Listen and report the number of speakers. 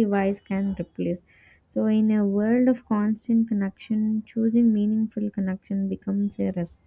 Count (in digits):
1